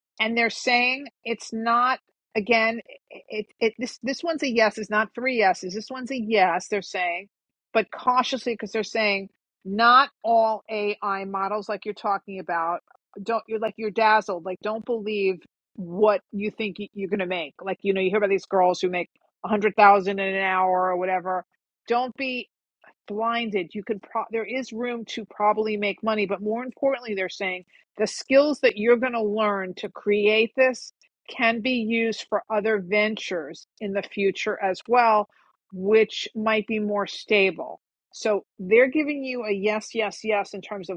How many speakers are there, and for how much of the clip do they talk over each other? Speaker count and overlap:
one, no overlap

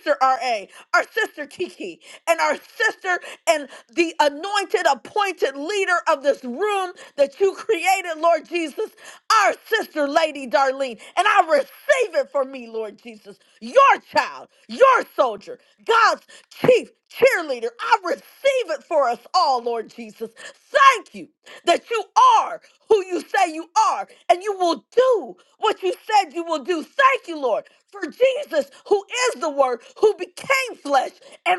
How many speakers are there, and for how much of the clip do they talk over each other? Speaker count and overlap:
one, no overlap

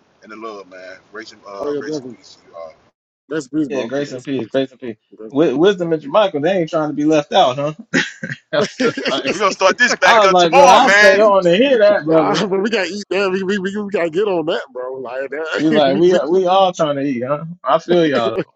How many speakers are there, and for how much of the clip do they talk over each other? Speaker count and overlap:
three, about 20%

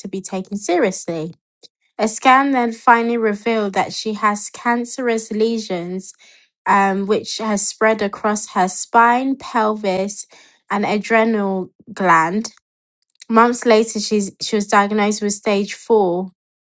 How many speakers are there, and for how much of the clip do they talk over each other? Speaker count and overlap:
one, no overlap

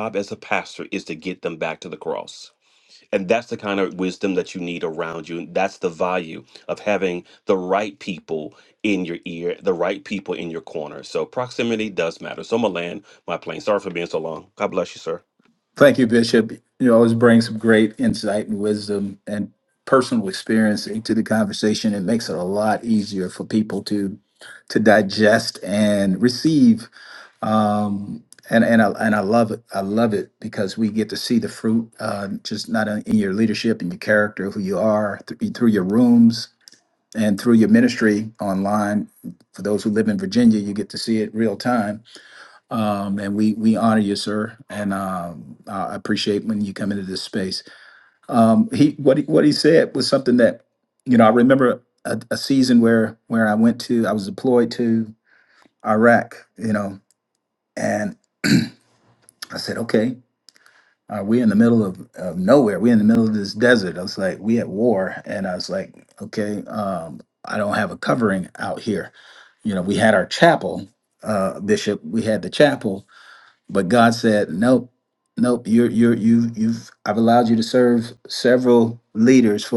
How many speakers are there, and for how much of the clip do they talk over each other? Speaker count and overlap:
two, no overlap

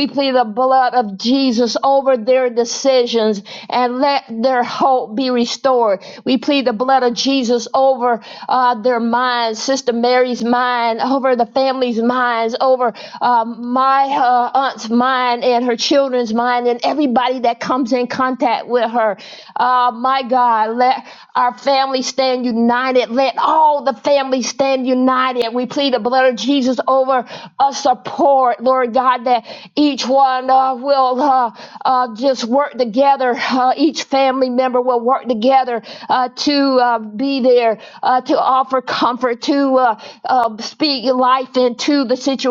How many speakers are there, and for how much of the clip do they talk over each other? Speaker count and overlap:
one, no overlap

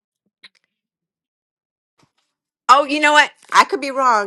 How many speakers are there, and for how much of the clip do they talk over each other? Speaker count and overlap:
one, no overlap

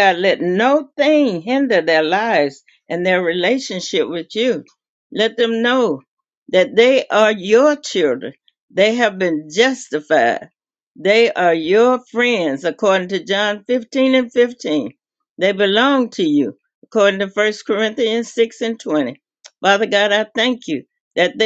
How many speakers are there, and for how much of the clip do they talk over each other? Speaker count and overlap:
one, no overlap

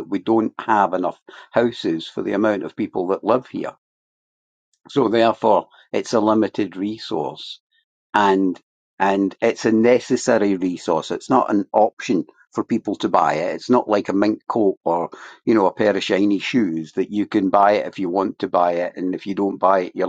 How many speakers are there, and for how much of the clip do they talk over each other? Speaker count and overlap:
one, no overlap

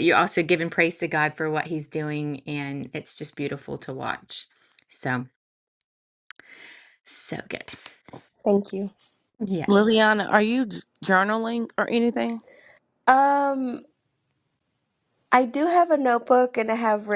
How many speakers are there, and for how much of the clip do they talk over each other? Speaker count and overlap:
three, no overlap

